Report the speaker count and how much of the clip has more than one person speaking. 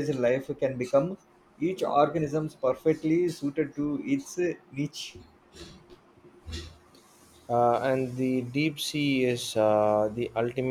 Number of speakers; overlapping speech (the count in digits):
2, no overlap